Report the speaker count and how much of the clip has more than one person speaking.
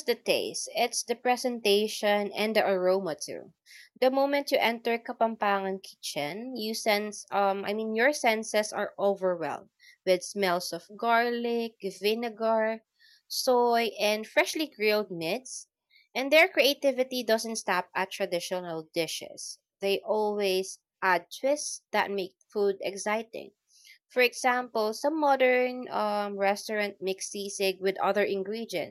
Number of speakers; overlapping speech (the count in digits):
1, no overlap